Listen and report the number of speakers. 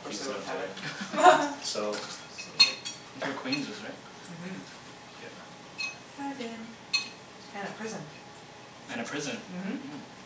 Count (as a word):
three